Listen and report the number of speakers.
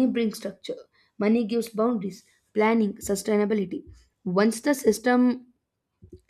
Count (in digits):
1